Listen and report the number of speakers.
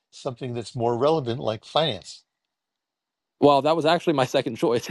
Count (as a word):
two